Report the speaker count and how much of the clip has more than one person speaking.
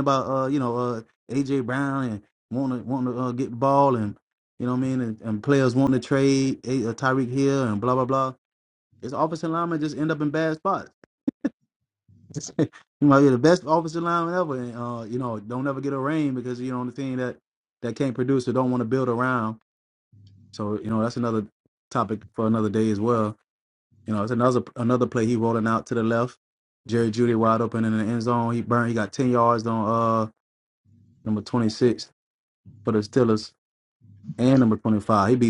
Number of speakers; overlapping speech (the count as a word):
one, no overlap